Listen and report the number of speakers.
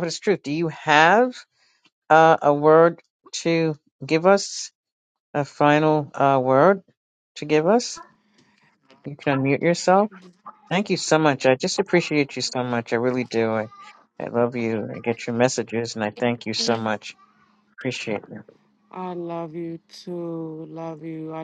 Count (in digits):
2